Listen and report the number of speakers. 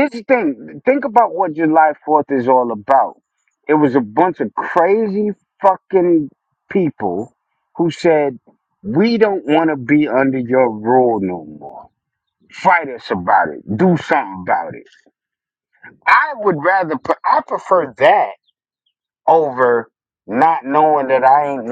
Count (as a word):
one